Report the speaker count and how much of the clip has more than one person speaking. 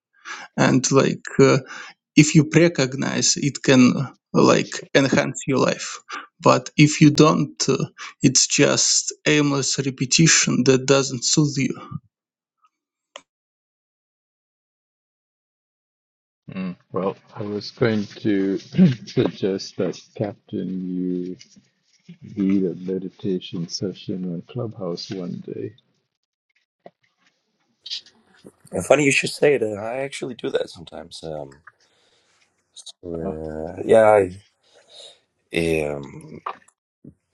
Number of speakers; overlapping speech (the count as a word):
three, under 1%